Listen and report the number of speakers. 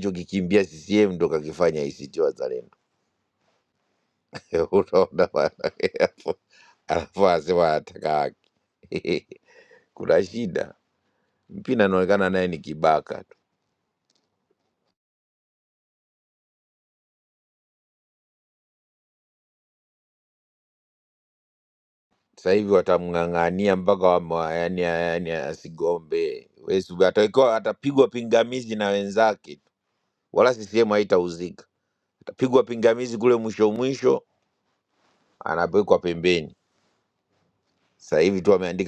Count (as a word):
one